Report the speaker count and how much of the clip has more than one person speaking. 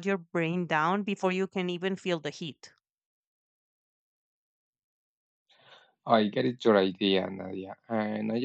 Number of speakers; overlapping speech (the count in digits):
2, no overlap